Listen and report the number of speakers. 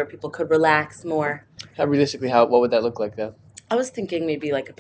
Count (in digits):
2